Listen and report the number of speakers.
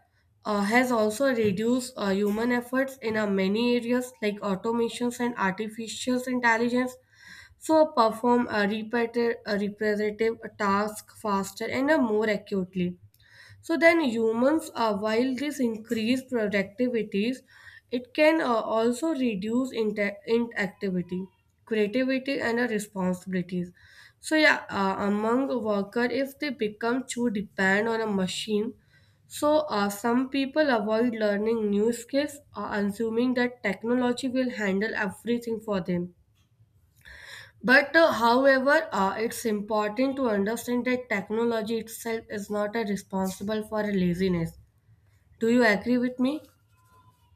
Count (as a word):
one